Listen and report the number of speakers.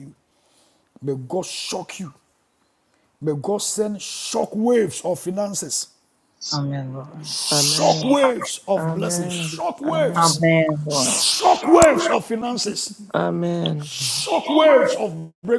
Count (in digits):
3